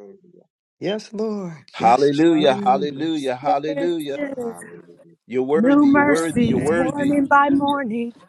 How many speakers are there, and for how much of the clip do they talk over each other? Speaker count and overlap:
four, about 55%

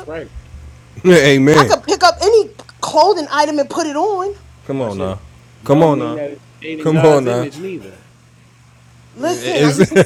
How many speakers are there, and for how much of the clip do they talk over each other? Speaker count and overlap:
three, about 25%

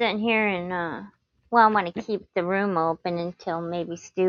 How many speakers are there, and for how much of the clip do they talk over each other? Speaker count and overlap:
one, no overlap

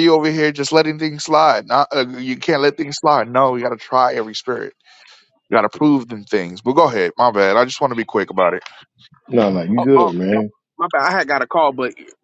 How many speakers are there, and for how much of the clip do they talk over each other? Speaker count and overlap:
three, about 4%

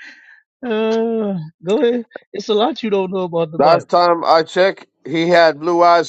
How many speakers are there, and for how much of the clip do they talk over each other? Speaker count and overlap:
two, about 4%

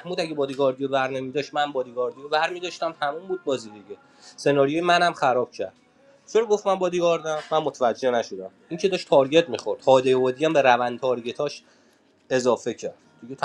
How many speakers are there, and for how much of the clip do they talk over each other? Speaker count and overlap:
one, no overlap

